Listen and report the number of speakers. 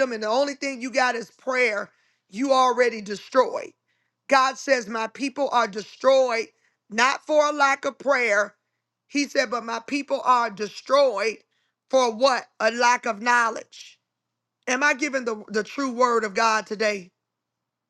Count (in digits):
1